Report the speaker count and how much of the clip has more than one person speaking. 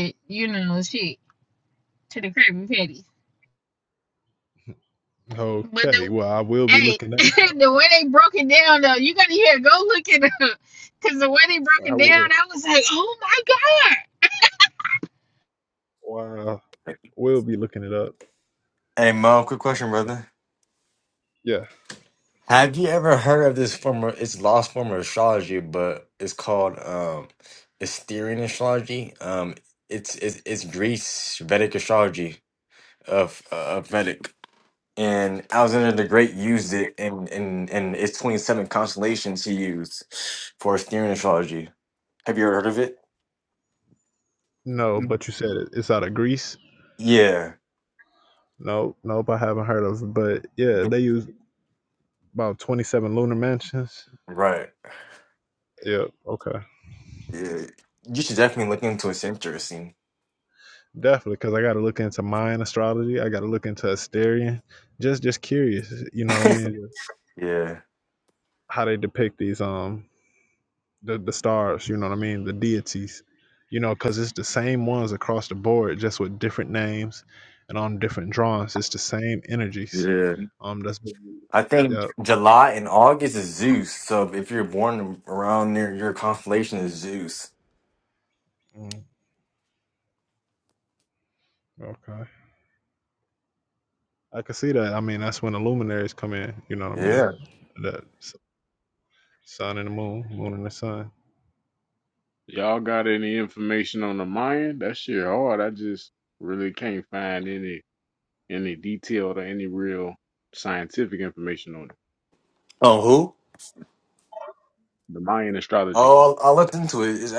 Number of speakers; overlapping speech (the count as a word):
four, about 2%